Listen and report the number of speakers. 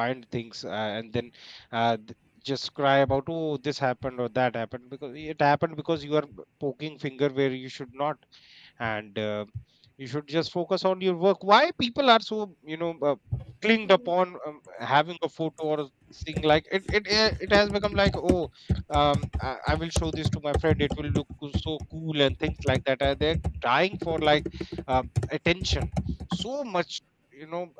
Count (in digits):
1